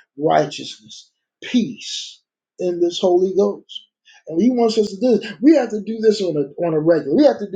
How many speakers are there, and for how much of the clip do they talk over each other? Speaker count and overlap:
one, no overlap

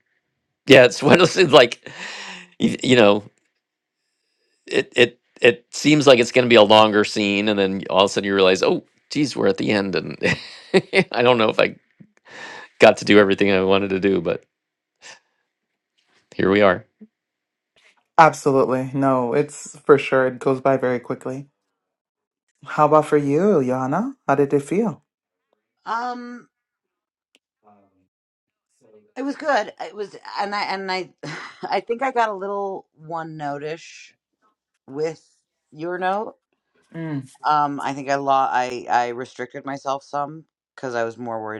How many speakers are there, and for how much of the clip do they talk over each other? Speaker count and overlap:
three, no overlap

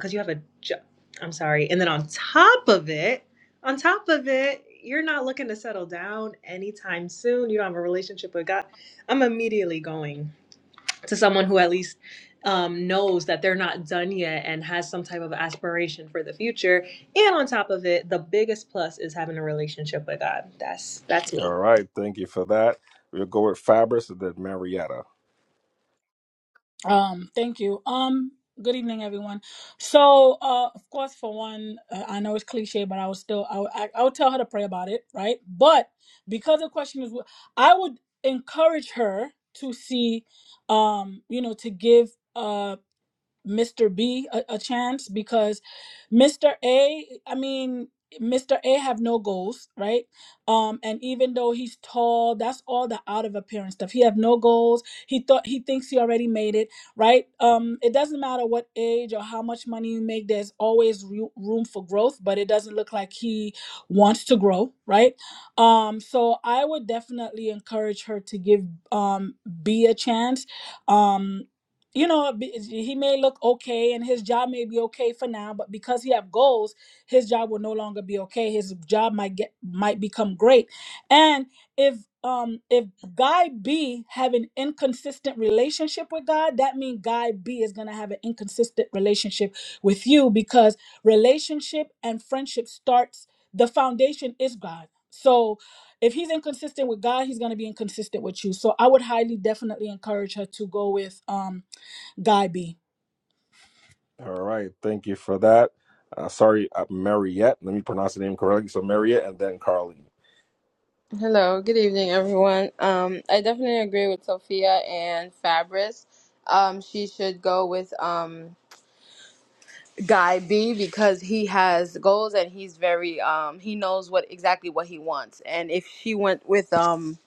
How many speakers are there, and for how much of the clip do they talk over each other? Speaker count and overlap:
four, under 1%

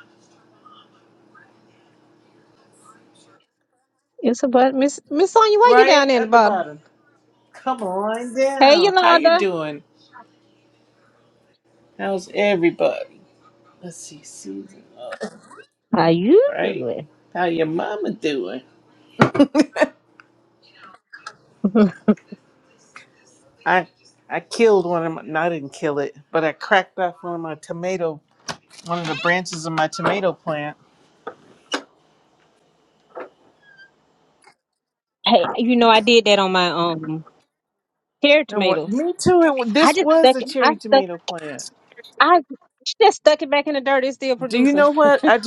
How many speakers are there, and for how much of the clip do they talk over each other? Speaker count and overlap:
two, about 9%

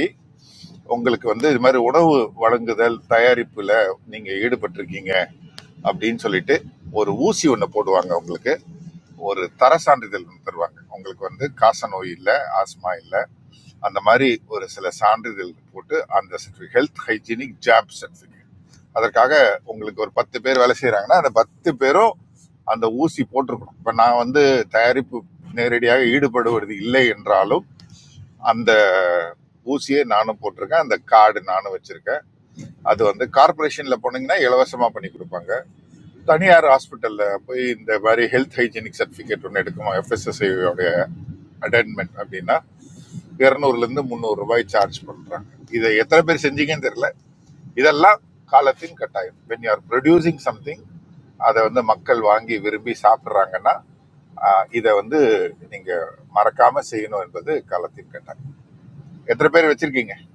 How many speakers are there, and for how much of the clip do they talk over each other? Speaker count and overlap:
one, no overlap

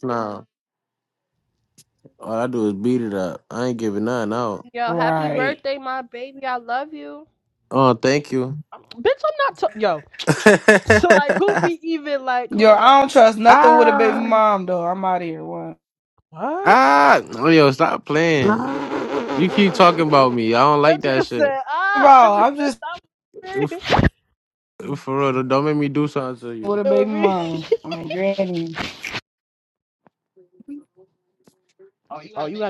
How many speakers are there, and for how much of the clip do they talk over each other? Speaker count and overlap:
three, about 14%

